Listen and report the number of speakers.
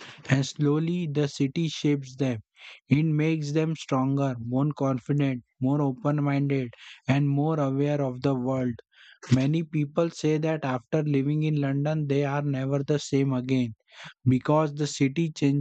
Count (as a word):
one